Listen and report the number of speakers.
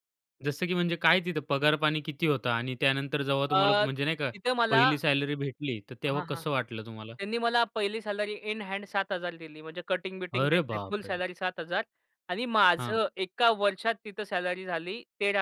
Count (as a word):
two